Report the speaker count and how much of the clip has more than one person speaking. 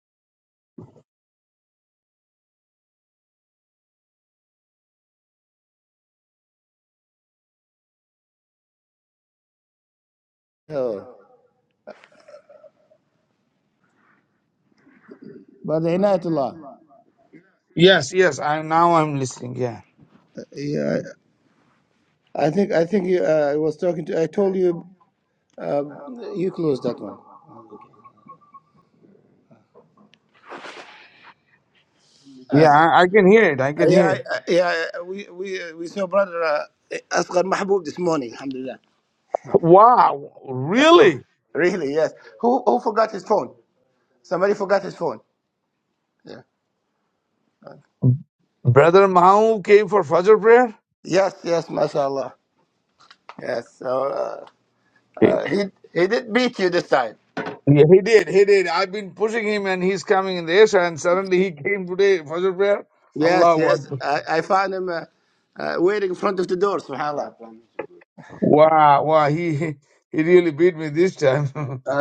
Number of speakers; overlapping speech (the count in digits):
2, about 2%